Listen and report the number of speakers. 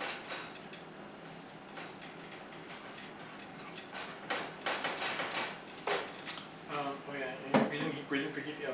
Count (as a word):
one